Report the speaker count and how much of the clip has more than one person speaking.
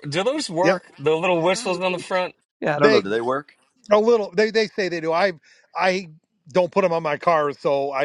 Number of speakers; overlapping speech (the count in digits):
3, about 8%